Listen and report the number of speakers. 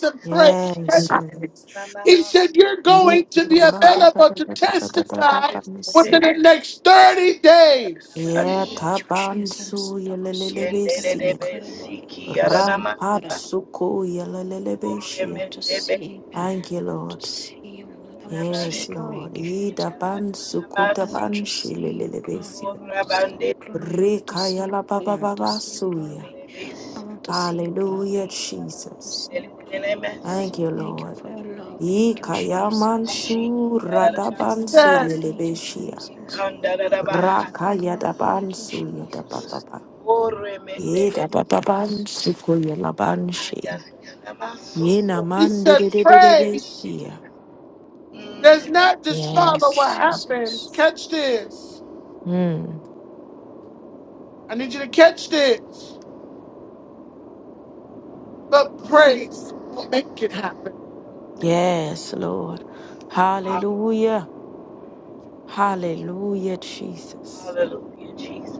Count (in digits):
4